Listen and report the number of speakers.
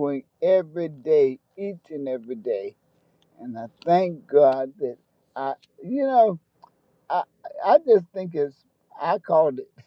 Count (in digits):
1